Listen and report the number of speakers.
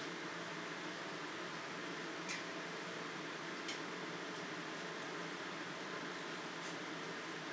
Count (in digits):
0